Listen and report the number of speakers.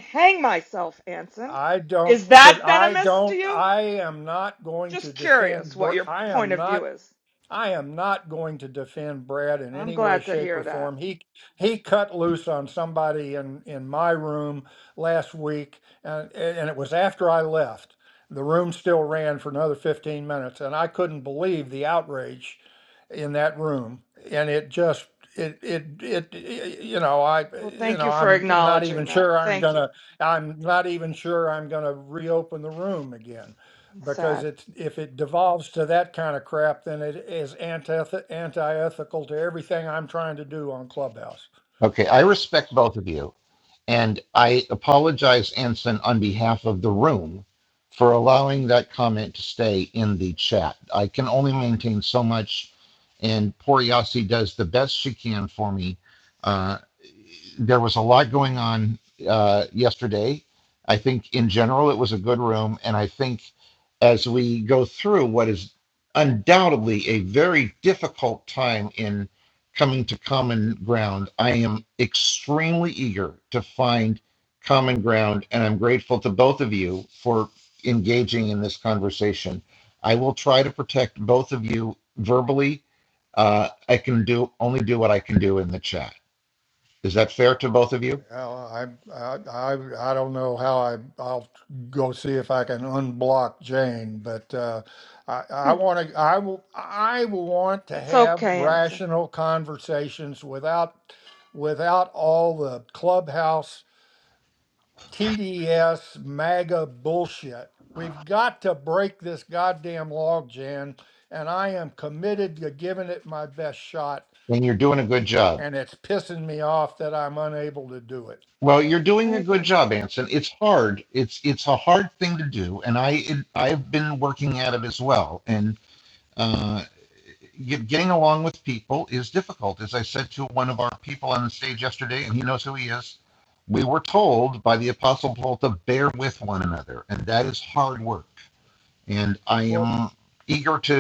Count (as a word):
three